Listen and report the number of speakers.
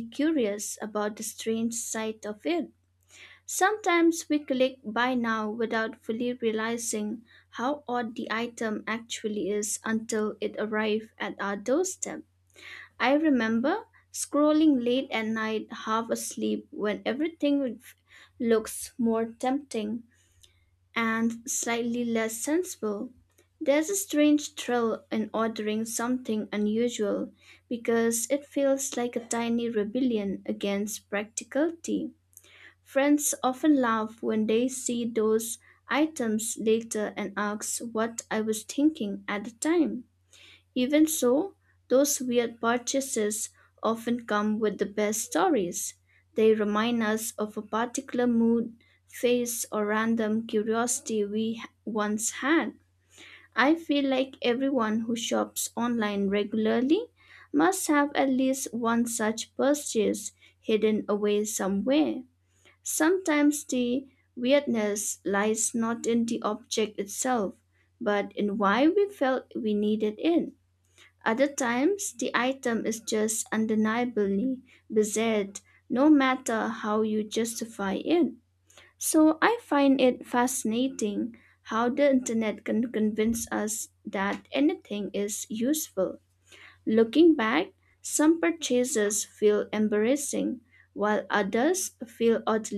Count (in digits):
1